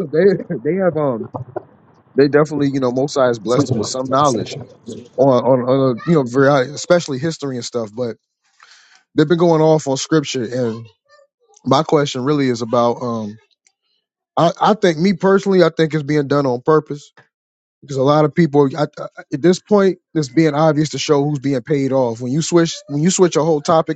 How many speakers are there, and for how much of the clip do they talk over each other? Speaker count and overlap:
1, no overlap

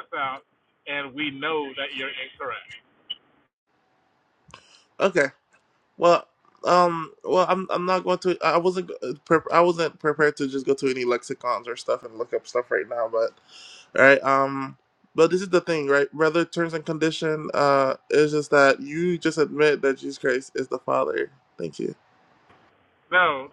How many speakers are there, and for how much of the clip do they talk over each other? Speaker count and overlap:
2, no overlap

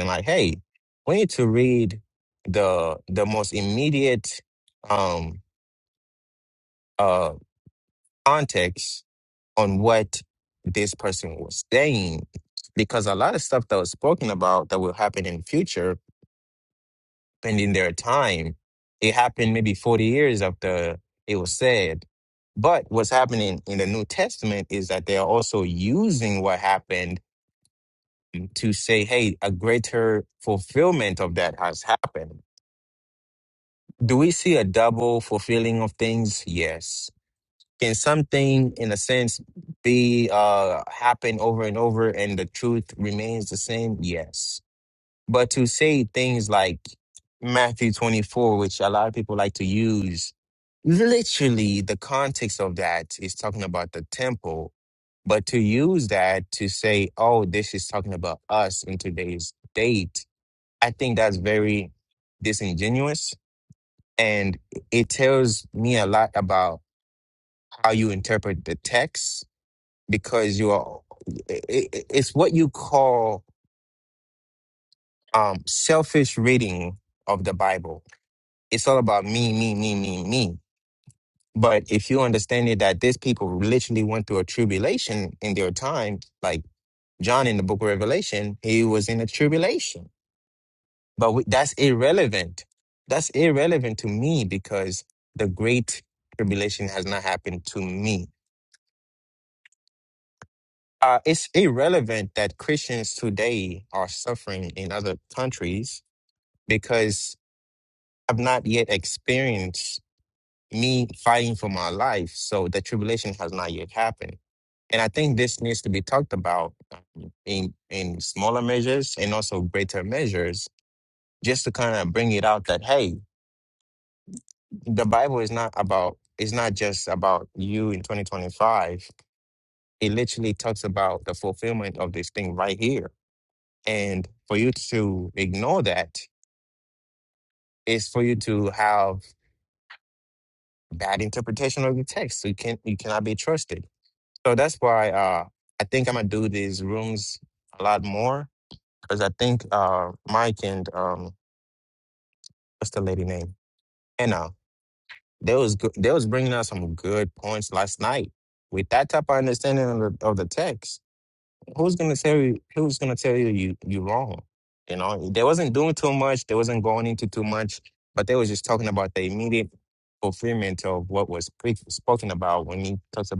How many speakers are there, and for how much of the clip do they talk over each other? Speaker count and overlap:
1, no overlap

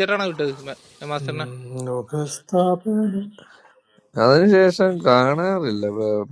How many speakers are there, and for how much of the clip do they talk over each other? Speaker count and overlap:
3, about 4%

